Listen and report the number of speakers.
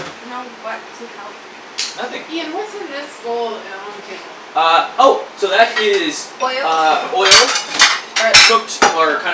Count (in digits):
3